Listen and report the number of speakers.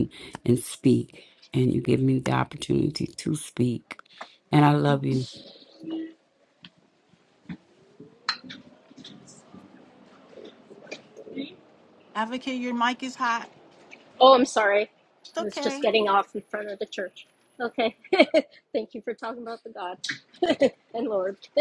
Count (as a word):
three